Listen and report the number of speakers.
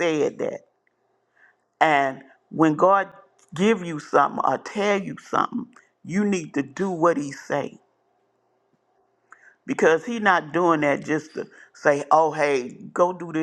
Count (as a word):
one